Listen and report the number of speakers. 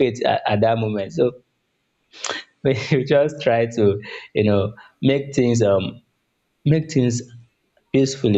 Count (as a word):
one